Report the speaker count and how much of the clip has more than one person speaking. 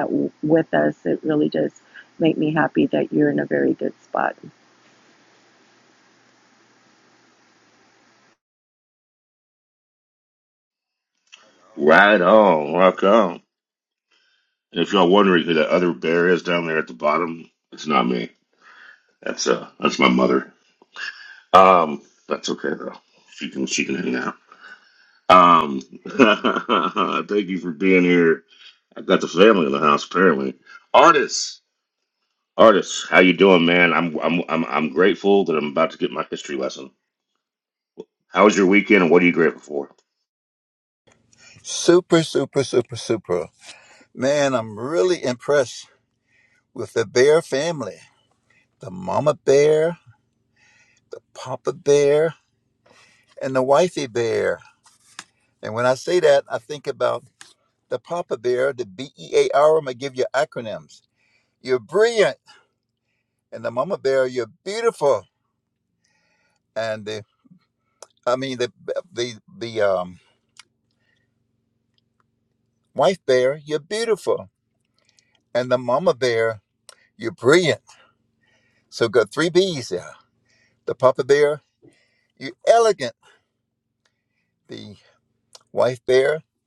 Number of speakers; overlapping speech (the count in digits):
3, no overlap